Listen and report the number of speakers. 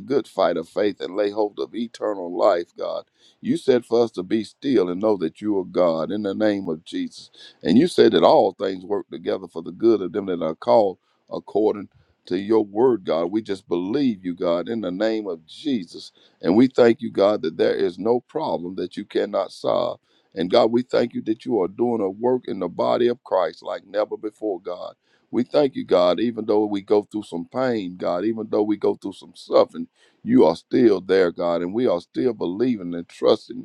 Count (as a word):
one